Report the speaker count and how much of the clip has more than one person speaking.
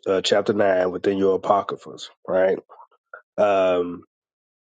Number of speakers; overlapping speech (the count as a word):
one, no overlap